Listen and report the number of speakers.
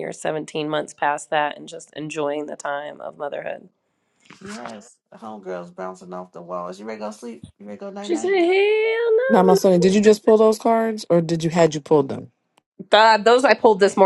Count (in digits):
3